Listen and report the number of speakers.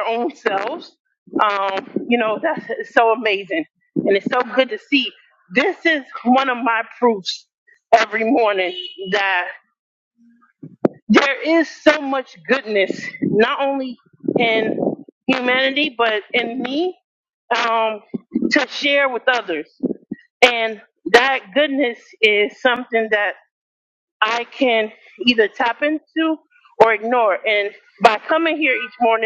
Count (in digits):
1